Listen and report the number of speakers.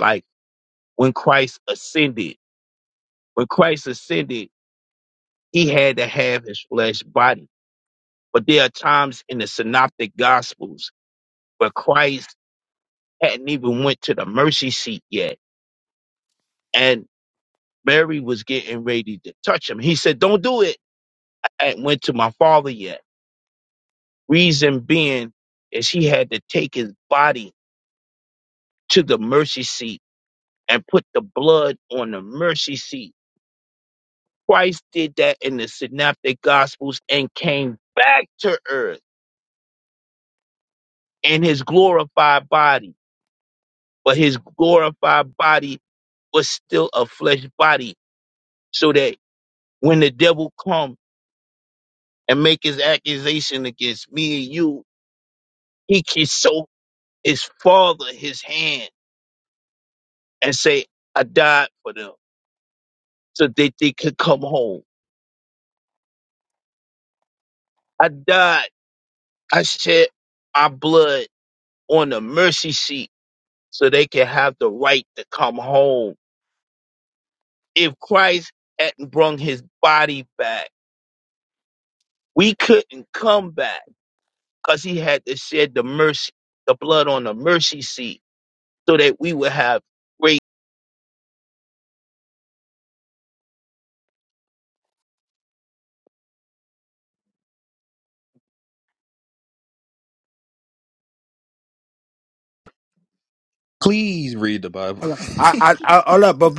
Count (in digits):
3